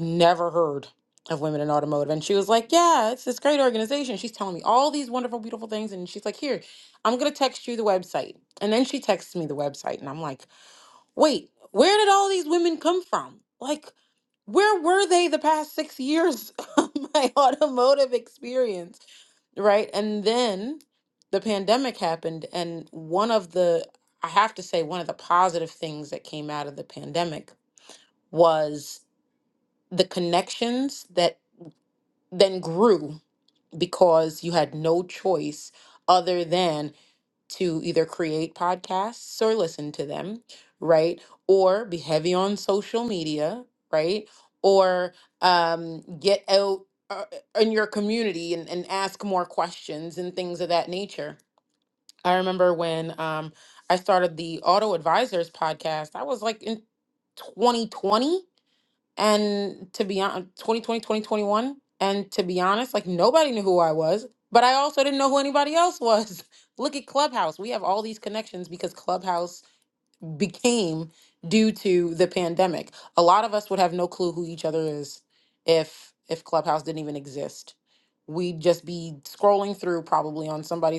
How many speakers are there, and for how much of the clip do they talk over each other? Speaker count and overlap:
1, no overlap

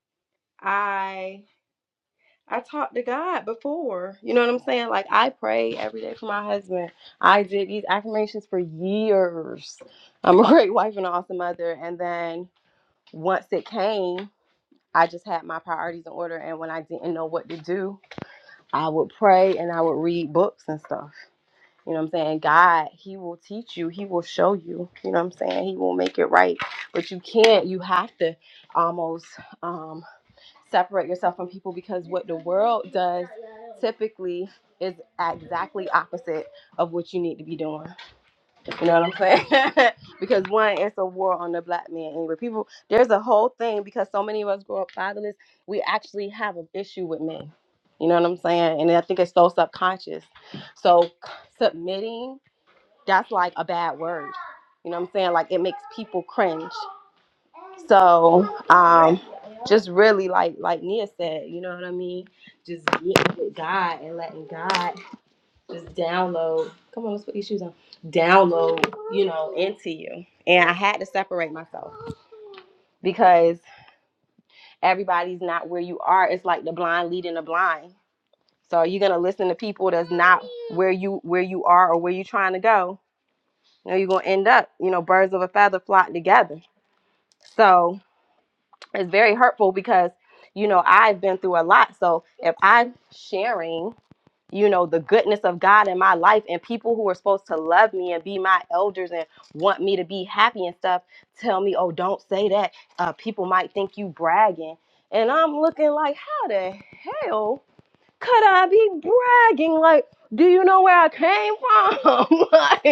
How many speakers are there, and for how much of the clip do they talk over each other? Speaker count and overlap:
1, no overlap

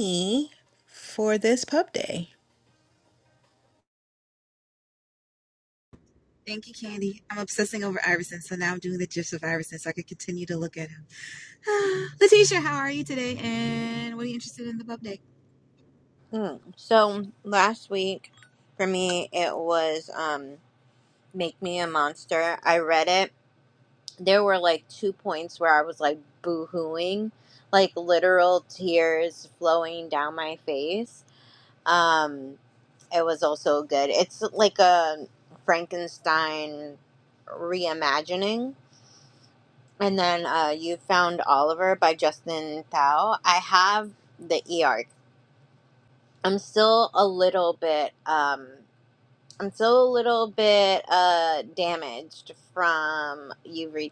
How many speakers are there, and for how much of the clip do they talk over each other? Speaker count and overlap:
3, no overlap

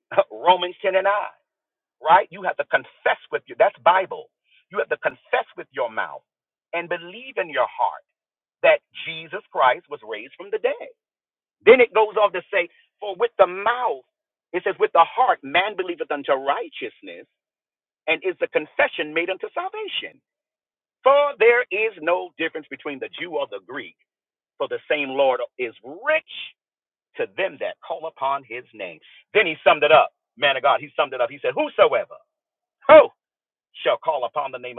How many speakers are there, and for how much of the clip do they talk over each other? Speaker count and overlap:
1, no overlap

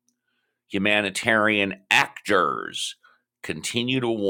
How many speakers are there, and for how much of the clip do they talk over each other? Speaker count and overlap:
1, no overlap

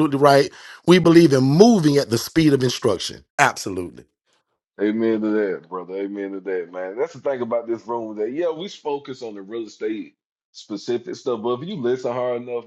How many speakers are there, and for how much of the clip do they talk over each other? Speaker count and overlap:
2, no overlap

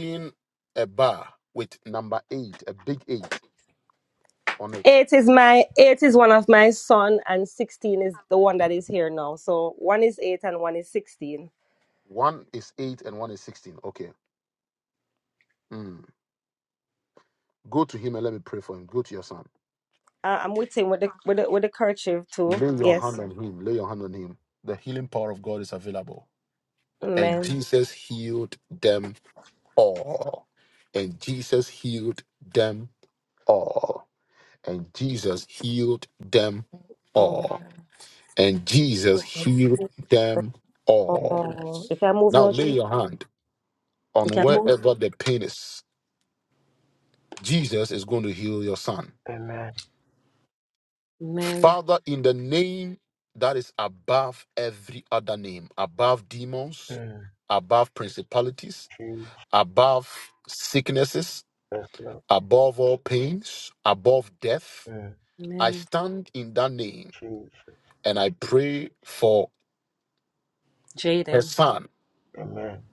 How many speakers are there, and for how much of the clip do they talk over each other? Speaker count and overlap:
3, about 5%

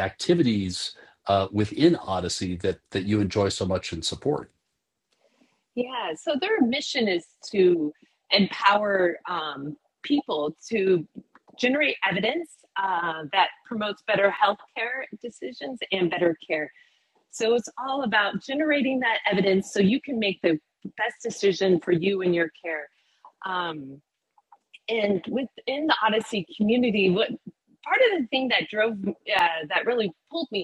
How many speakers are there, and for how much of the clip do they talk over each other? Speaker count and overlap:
2, no overlap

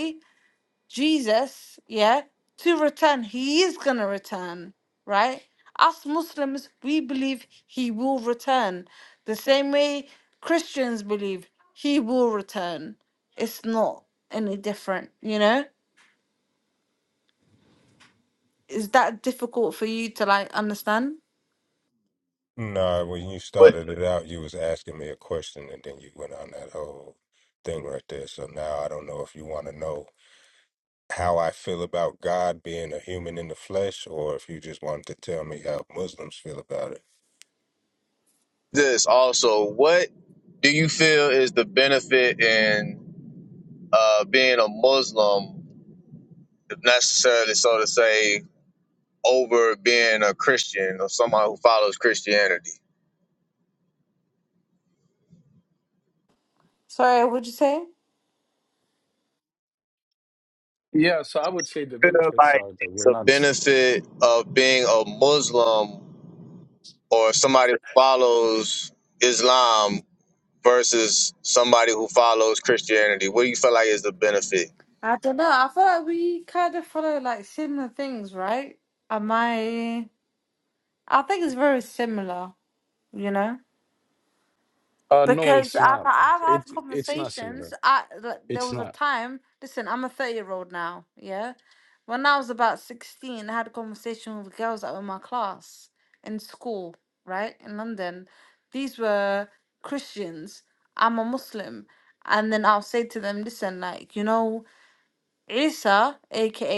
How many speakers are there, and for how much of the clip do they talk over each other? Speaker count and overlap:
4, about 3%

